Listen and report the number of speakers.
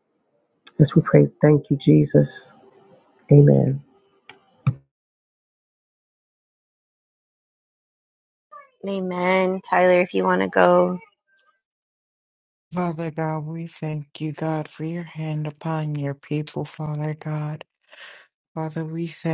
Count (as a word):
three